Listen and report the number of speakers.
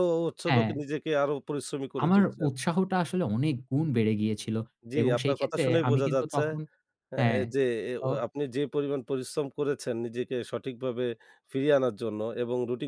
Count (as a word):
two